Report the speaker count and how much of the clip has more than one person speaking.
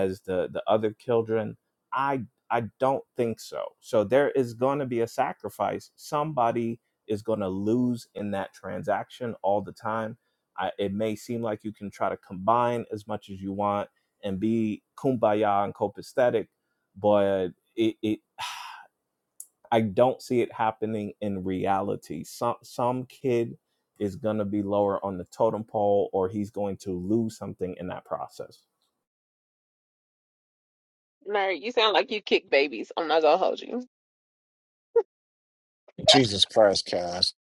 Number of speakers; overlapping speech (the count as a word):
three, no overlap